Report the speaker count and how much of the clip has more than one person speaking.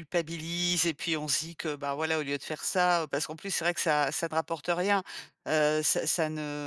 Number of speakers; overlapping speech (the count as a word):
one, no overlap